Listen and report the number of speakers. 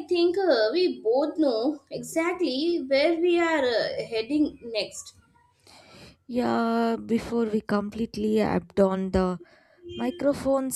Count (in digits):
2